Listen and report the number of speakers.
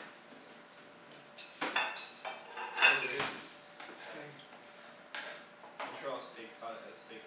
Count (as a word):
one